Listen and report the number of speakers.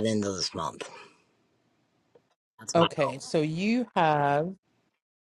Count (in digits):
2